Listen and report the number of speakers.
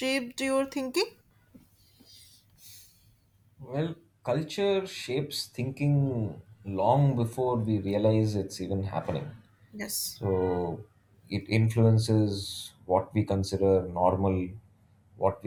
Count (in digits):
2